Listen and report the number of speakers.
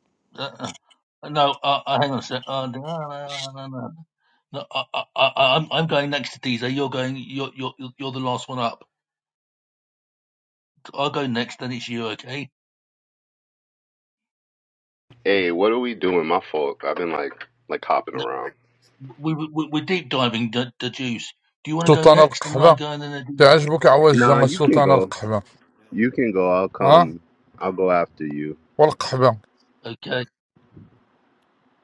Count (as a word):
three